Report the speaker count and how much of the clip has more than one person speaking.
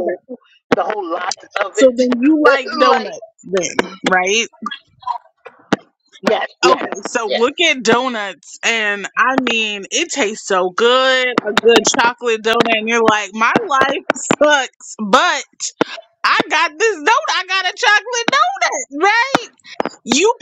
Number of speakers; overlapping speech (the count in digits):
2, about 5%